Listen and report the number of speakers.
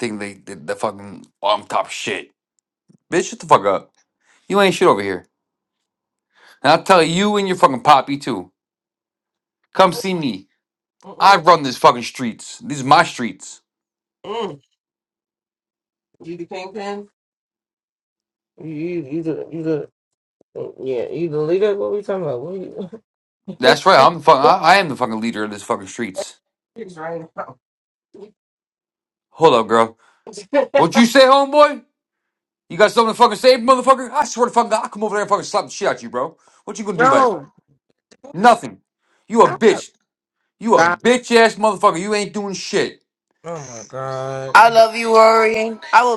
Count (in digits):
3